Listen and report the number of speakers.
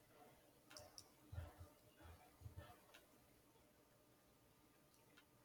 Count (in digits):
0